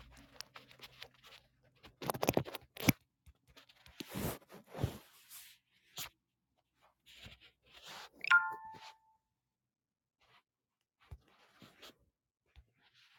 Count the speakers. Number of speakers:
0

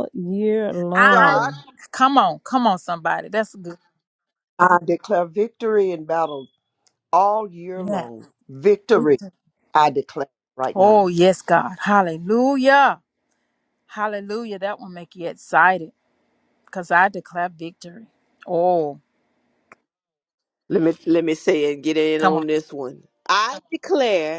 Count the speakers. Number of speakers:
4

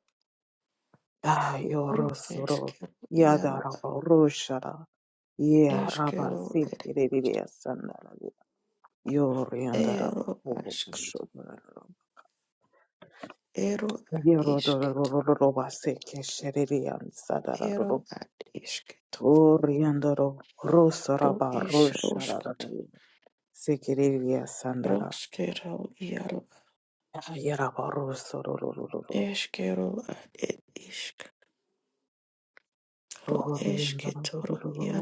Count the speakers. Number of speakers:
2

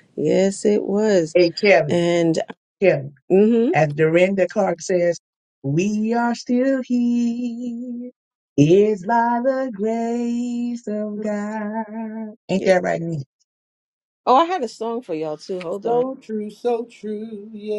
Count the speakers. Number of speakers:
3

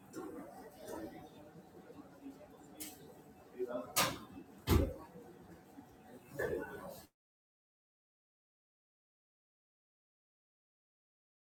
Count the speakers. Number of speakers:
0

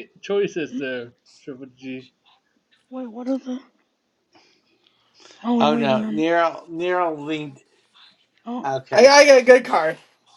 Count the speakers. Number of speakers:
4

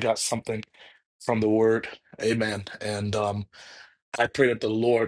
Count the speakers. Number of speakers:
1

